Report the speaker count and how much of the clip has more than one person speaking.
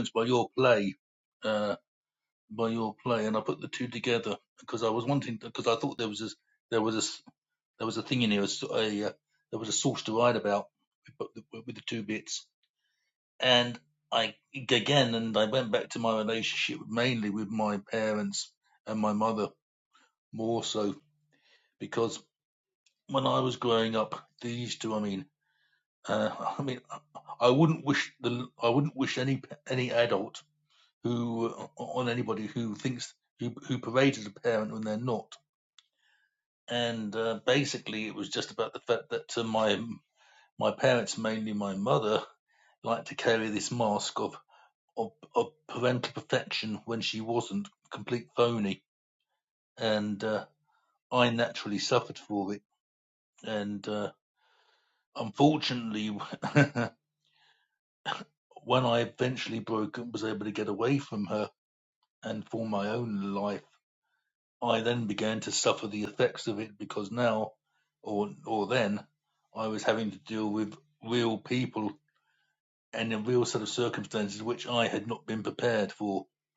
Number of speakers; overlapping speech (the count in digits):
1, no overlap